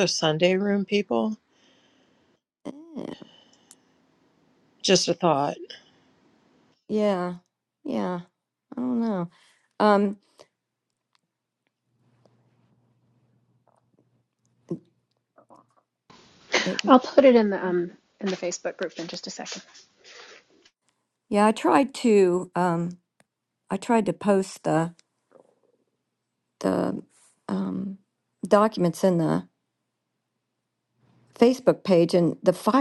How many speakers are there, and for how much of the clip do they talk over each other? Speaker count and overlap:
3, under 1%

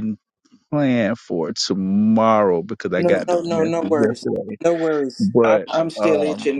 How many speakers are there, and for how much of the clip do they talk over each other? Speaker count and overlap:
2, about 39%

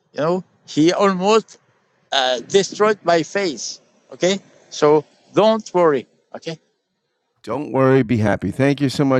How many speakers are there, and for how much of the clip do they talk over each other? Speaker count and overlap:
2, no overlap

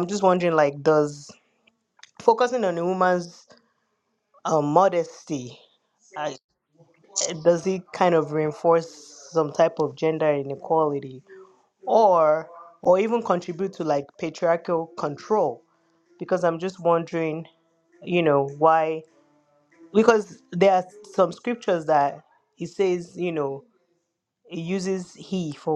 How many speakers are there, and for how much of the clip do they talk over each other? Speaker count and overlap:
1, no overlap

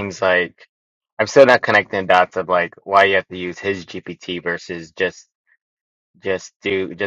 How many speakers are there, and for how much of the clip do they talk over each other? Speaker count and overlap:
1, no overlap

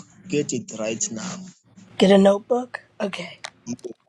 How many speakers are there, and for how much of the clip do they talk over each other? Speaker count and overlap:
2, no overlap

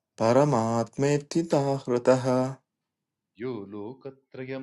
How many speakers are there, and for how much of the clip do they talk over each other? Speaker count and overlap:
2, no overlap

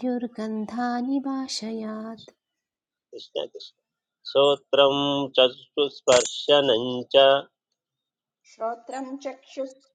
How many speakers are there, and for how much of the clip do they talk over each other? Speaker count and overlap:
3, no overlap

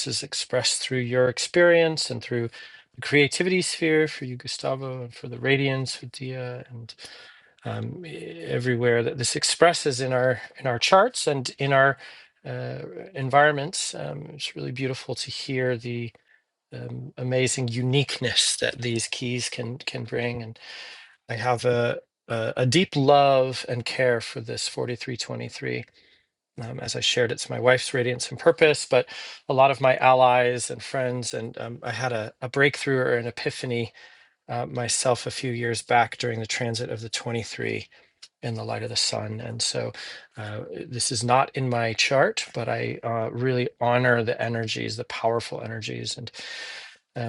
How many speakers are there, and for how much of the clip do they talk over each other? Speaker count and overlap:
1, no overlap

